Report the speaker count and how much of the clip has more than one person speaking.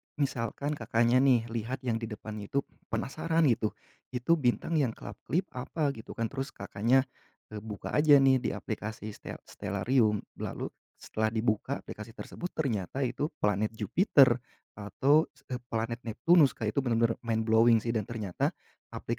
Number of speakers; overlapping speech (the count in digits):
1, no overlap